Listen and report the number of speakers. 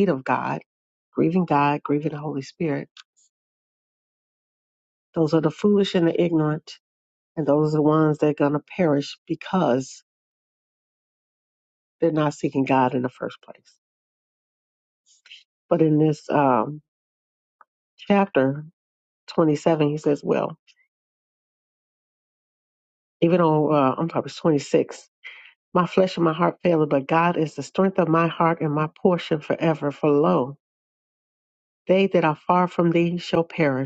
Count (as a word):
one